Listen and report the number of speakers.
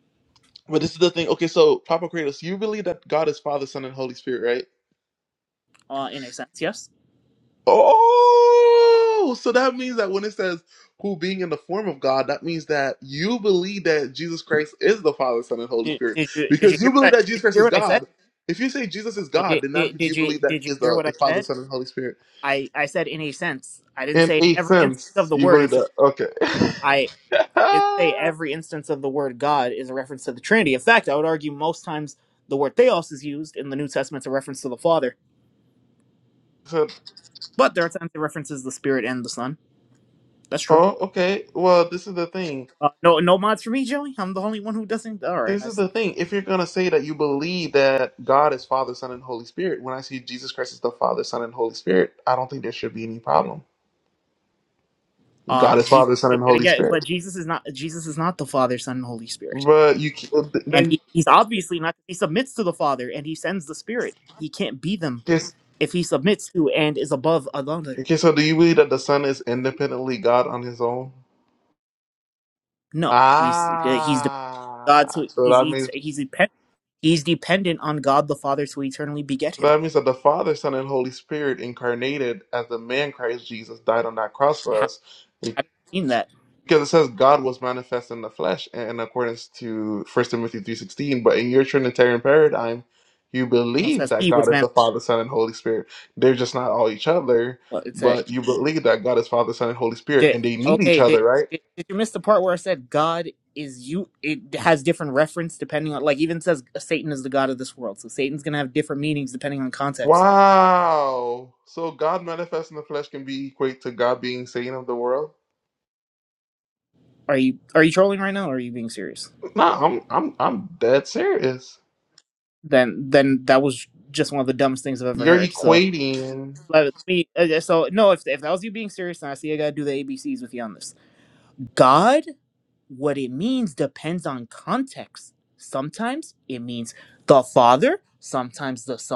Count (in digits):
2